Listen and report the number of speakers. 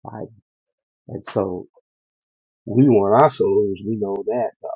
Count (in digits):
1